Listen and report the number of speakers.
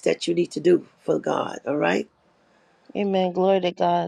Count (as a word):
two